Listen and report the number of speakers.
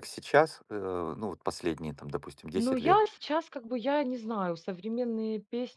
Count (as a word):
two